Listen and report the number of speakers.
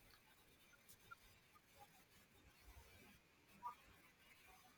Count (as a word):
zero